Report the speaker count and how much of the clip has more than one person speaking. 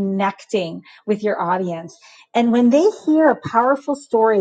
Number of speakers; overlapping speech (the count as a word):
one, no overlap